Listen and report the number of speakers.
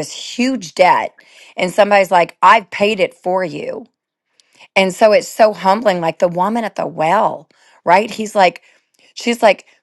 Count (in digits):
1